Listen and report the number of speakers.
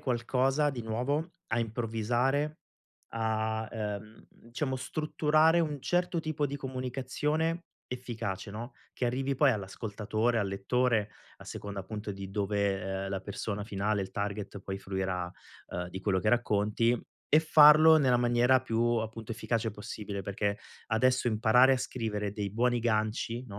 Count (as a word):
one